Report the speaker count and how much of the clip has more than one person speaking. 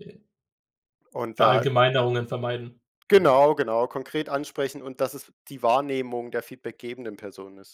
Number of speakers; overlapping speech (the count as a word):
two, about 4%